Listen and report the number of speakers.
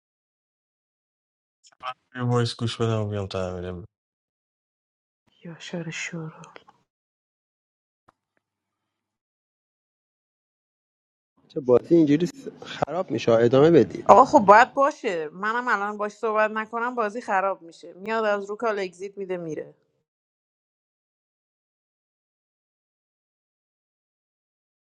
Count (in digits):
3